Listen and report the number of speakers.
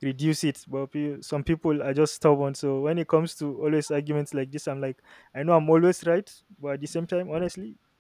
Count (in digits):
1